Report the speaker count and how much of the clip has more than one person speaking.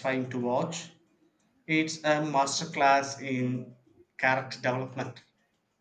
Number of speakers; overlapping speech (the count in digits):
1, no overlap